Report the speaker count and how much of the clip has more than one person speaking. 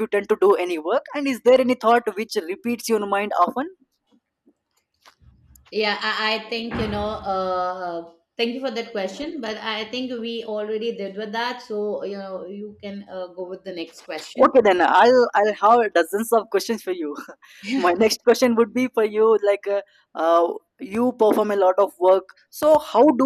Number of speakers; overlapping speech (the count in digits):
2, about 1%